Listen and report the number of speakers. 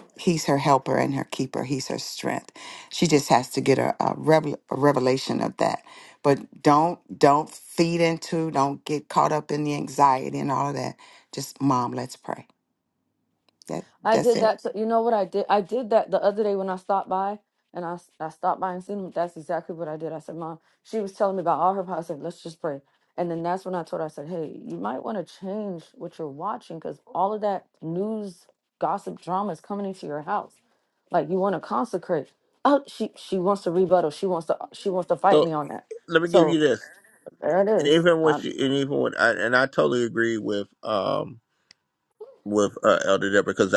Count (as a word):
three